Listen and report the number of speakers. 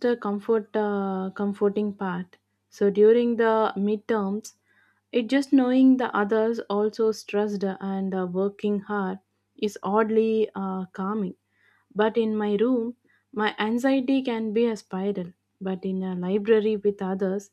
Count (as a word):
one